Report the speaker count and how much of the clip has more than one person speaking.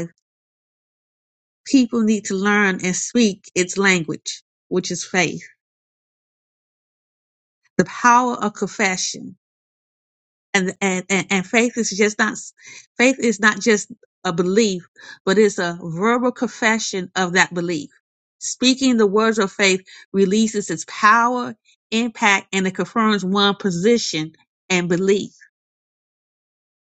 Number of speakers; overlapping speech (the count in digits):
1, no overlap